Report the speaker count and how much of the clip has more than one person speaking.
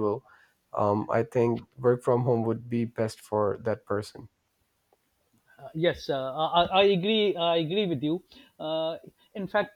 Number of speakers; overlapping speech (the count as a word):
two, no overlap